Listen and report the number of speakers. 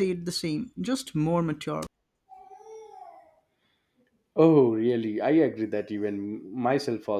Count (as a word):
two